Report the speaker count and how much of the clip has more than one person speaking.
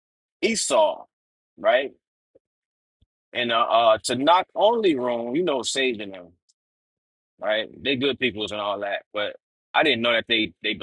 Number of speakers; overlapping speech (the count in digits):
1, no overlap